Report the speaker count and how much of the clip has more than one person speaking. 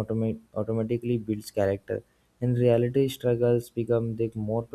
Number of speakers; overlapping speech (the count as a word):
one, no overlap